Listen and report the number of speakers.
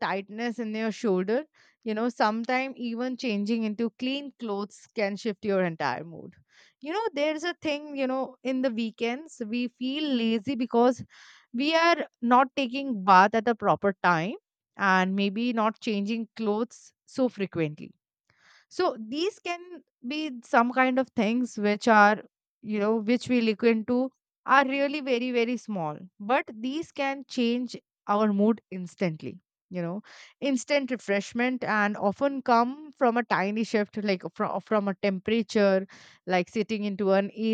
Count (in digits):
1